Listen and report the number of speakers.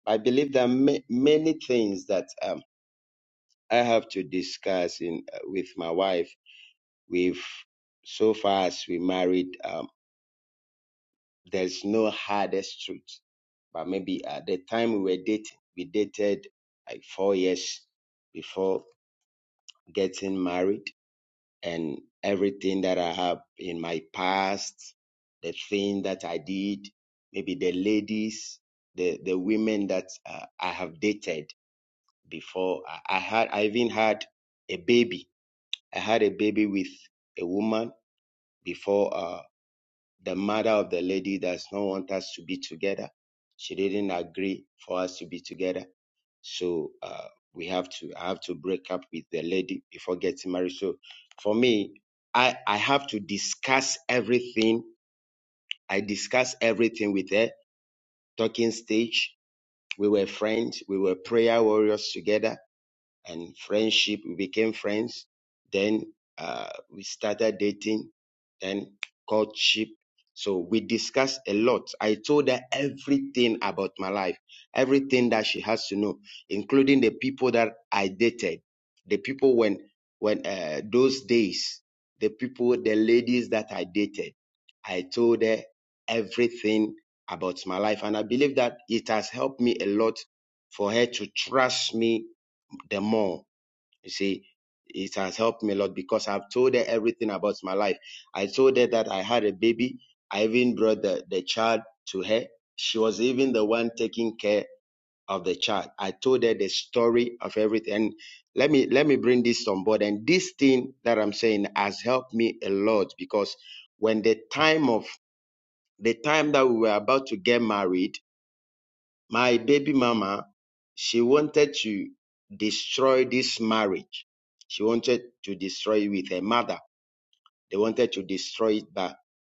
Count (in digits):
1